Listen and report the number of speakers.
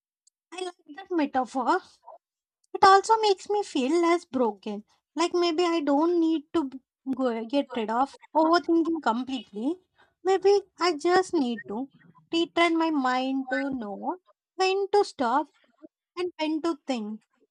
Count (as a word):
one